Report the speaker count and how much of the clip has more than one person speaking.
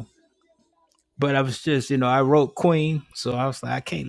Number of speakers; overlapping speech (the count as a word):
one, no overlap